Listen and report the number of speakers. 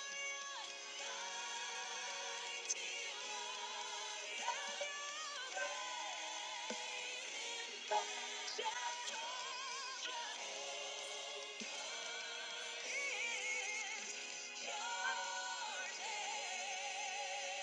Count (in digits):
0